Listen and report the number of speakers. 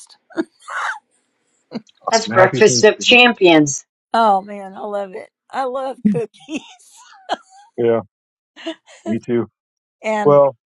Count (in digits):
3